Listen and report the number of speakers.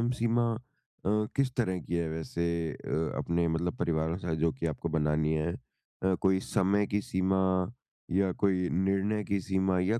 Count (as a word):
one